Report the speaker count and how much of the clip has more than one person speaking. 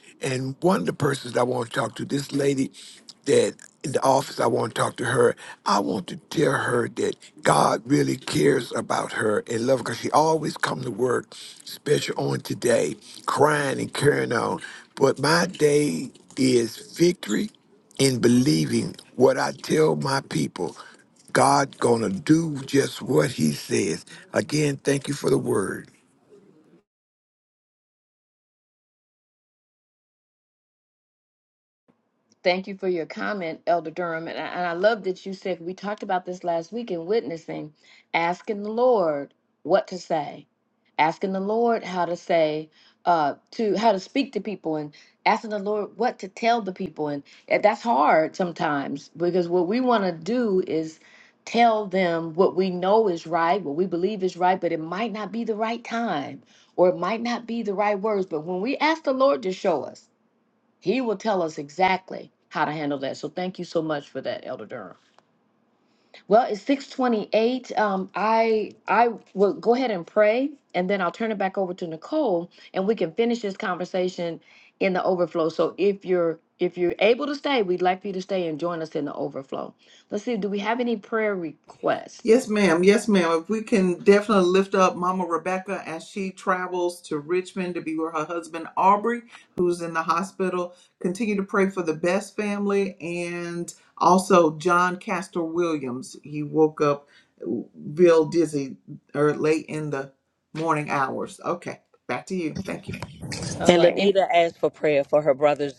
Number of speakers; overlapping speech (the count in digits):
4, under 1%